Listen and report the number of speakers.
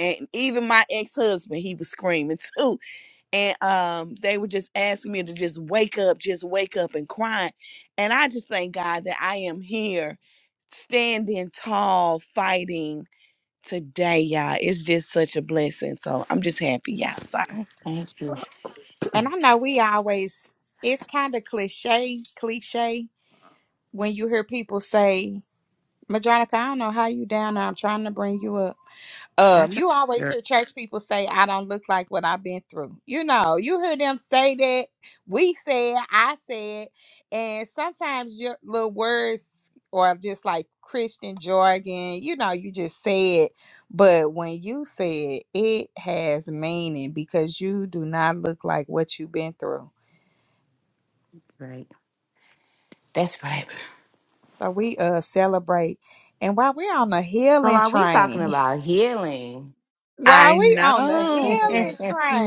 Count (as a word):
three